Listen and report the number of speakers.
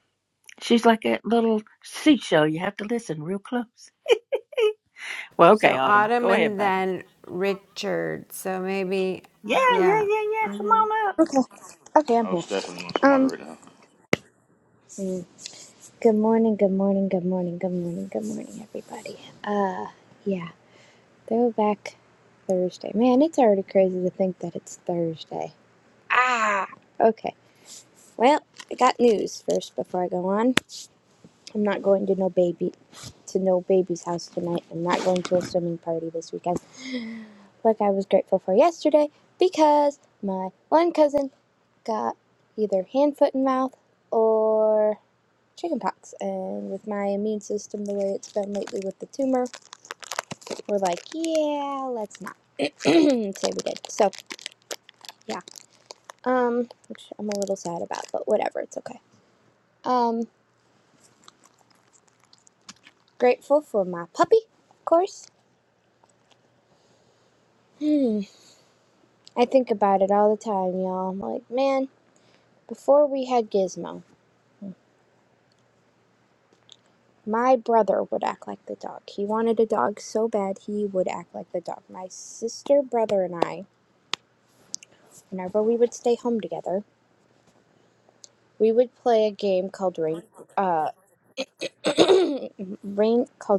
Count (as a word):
four